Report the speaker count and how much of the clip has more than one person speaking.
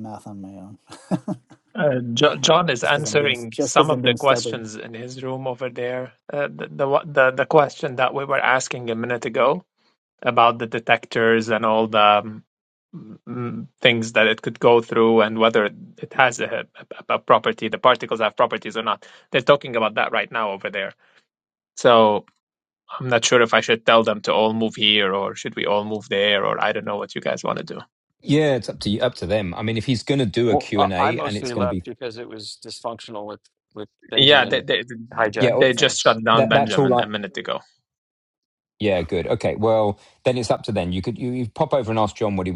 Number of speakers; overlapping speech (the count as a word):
four, about 12%